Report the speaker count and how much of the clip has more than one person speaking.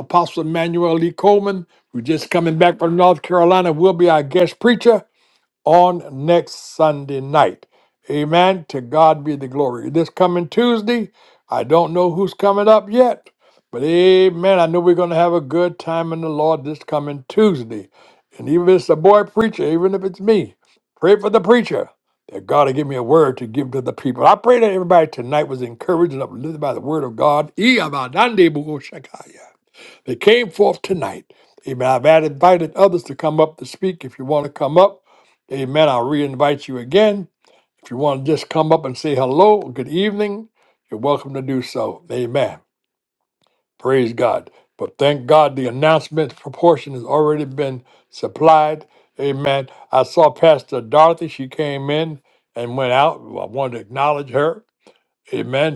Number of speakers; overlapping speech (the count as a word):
one, no overlap